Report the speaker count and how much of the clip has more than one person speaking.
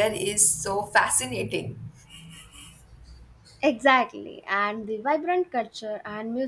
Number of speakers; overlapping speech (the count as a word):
two, no overlap